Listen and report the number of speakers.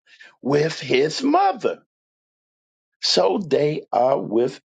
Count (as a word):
one